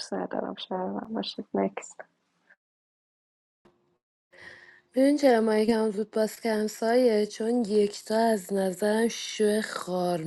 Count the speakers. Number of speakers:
two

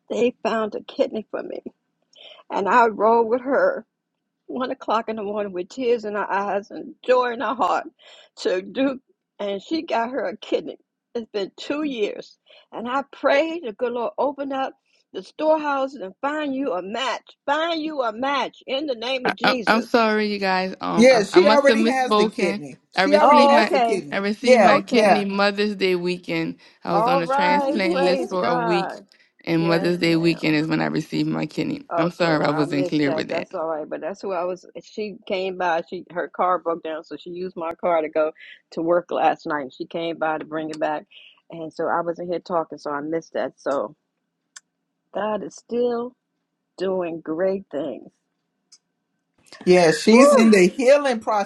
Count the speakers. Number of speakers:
three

